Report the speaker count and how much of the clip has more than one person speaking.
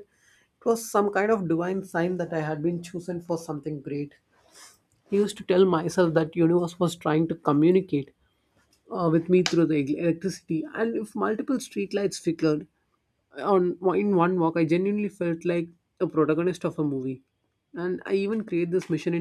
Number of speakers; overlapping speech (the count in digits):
1, no overlap